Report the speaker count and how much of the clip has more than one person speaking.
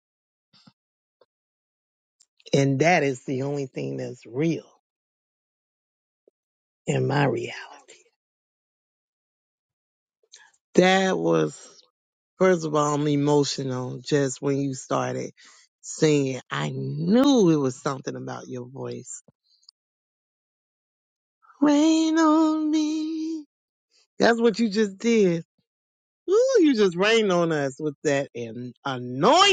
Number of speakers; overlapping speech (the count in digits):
1, no overlap